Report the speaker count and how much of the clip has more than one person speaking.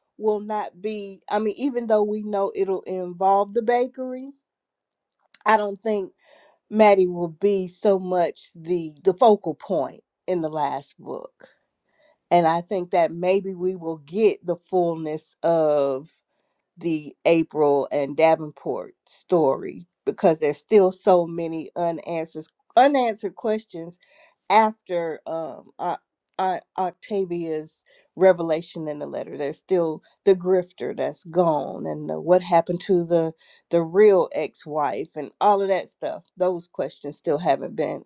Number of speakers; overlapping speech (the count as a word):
one, no overlap